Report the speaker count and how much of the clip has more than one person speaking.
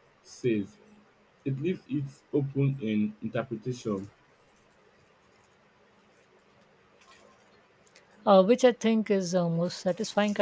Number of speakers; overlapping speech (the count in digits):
2, no overlap